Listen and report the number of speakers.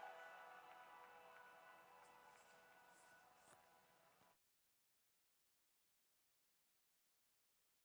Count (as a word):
zero